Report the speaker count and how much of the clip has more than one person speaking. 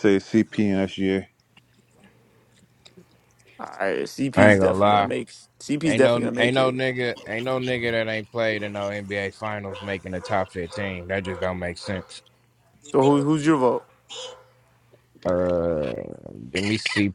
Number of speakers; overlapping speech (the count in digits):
3, about 10%